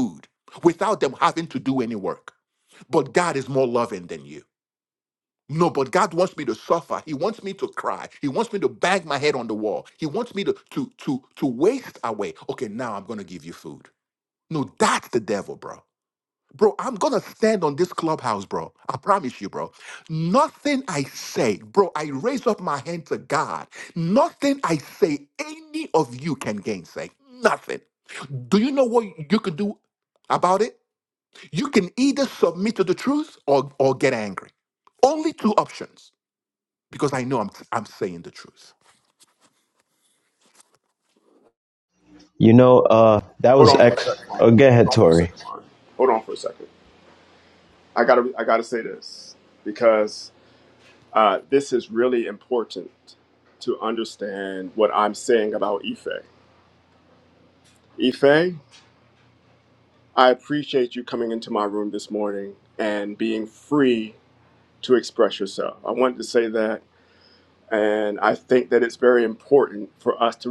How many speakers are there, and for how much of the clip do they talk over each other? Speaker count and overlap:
3, about 2%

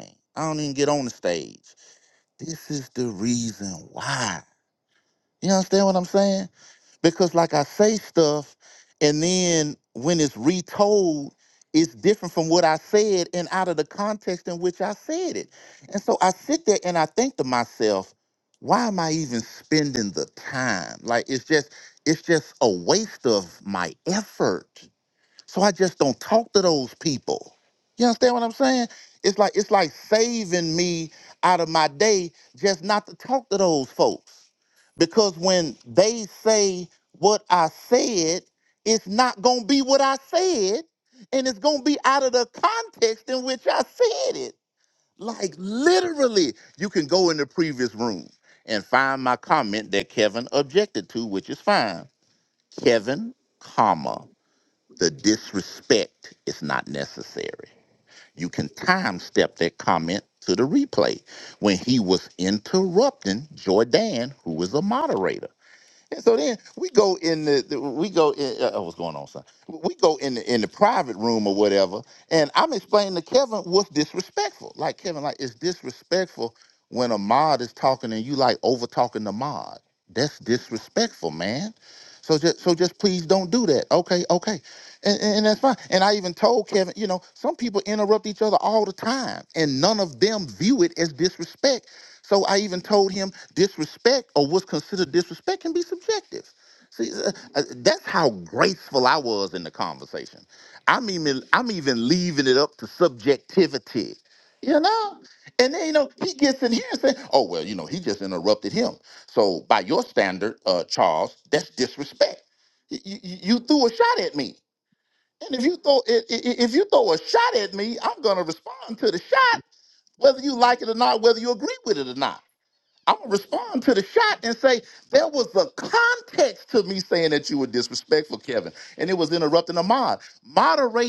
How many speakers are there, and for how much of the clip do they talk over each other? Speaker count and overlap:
1, no overlap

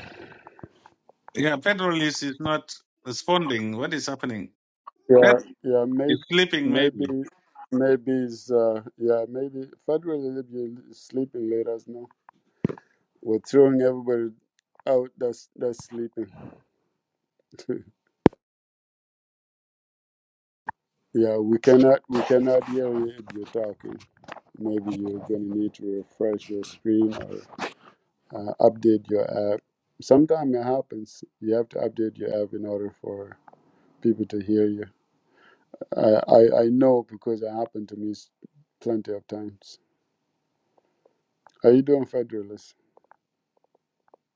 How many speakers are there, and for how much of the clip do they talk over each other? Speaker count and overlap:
2, about 2%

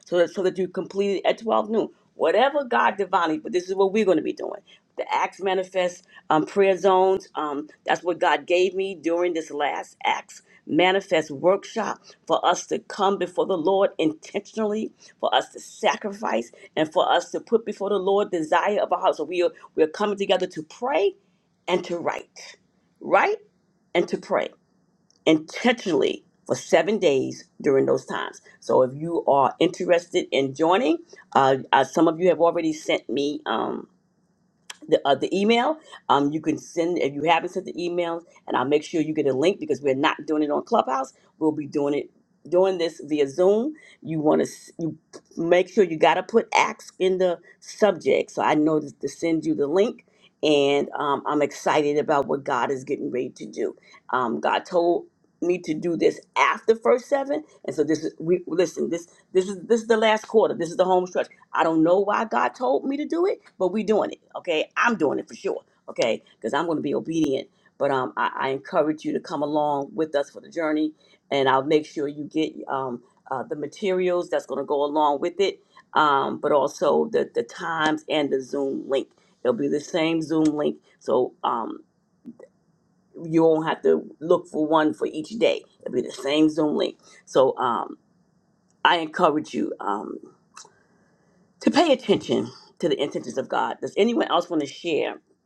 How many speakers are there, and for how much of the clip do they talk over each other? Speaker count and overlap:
1, no overlap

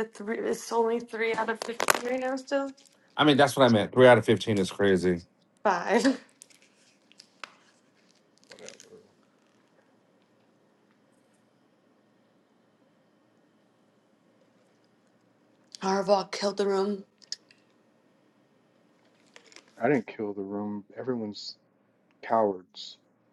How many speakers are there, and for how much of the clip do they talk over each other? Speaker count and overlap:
3, no overlap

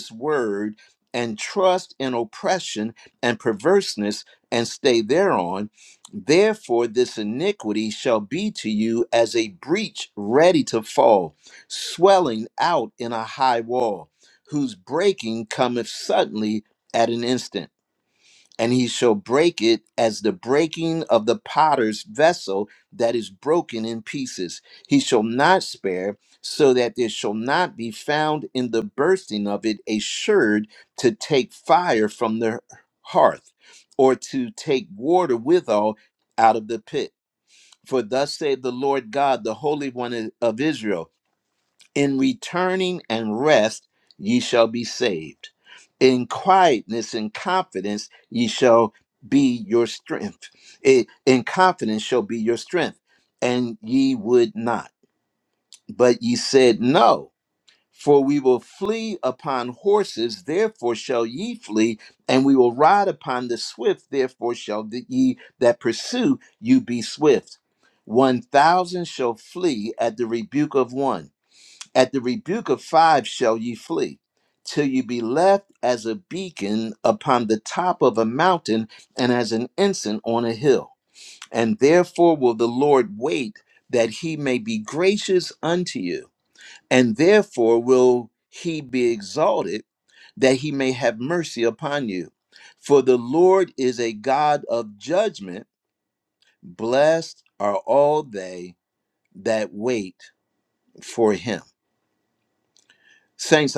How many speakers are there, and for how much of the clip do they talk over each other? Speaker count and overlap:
1, no overlap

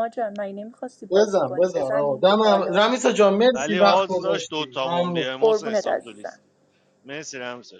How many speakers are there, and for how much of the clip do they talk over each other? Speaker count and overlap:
3, about 55%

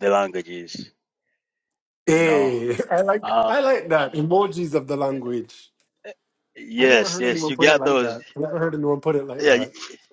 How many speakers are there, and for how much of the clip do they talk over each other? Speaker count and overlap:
2, about 24%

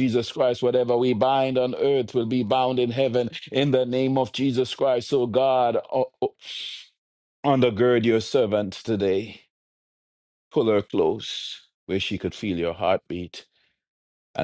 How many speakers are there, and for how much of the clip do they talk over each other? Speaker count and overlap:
1, no overlap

